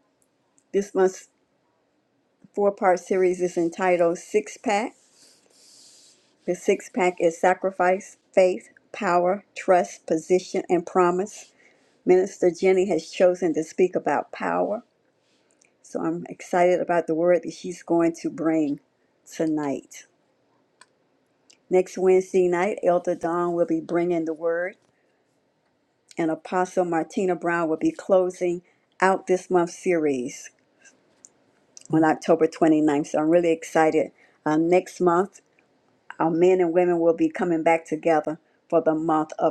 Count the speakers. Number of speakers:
1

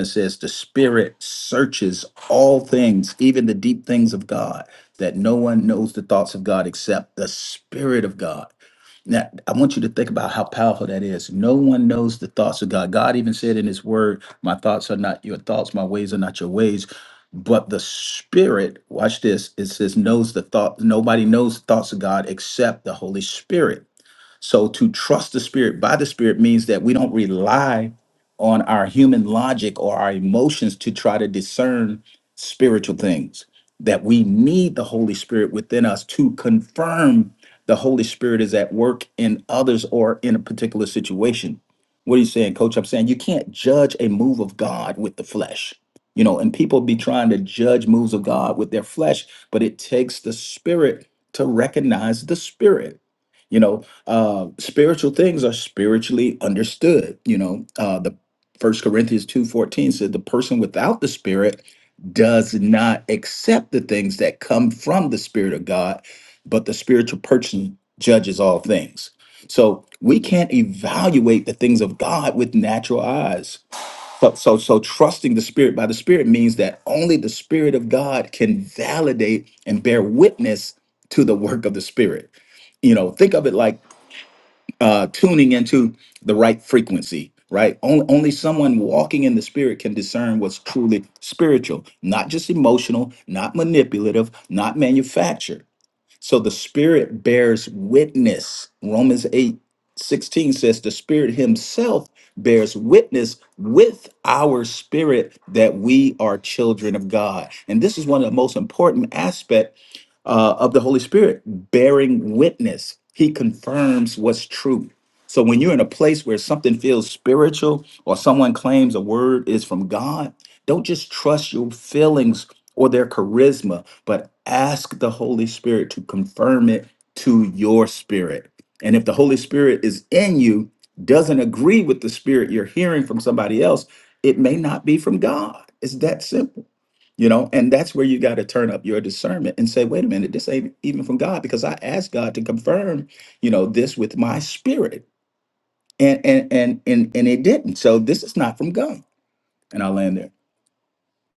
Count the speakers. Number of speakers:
1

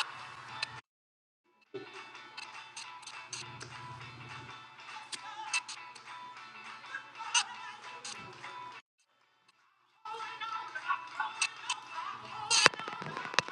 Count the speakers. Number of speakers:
0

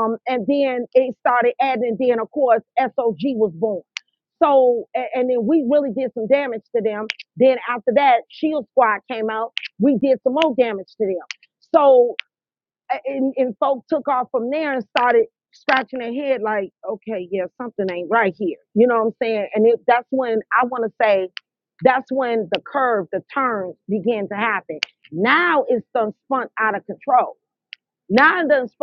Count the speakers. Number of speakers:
1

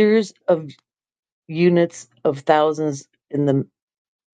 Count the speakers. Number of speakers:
1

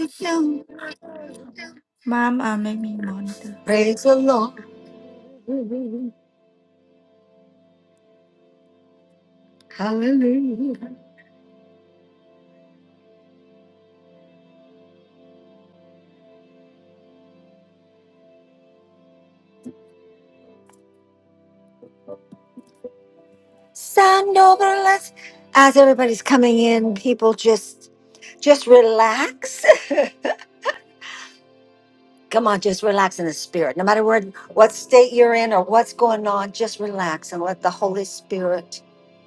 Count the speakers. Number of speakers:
2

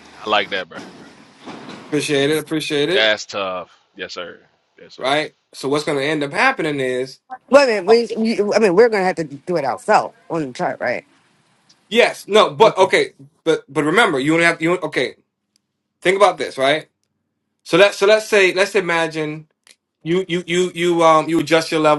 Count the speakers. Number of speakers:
3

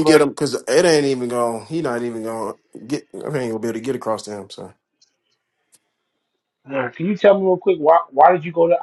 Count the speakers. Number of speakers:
2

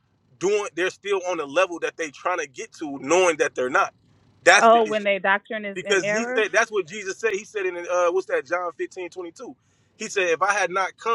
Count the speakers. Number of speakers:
2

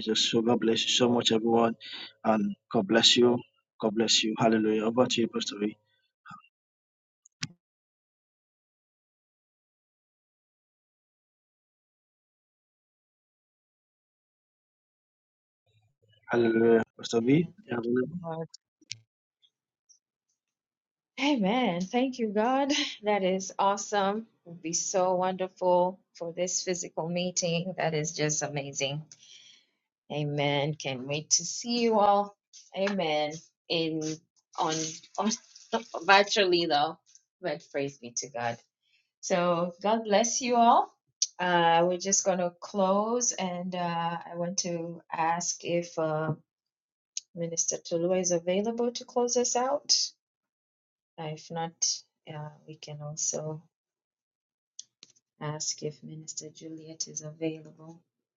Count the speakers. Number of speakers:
2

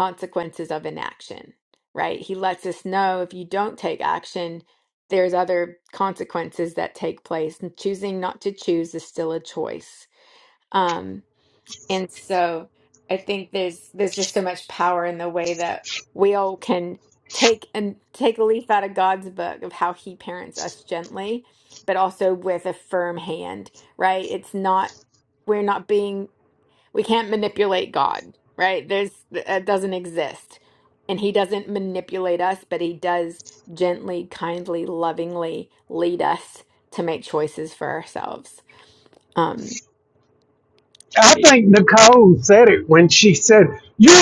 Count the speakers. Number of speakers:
2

